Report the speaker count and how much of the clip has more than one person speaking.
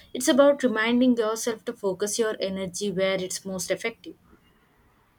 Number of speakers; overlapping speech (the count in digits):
1, no overlap